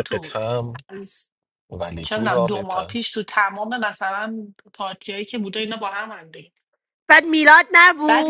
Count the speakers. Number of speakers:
3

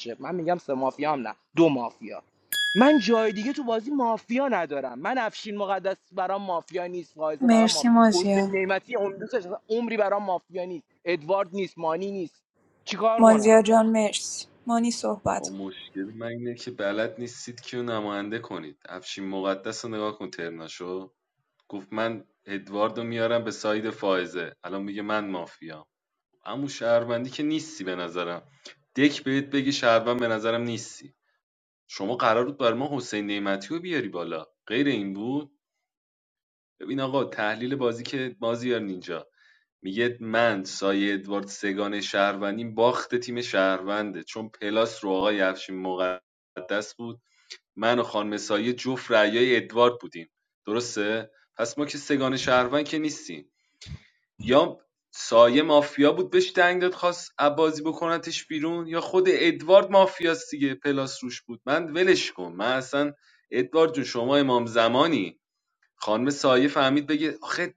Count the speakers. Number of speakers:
3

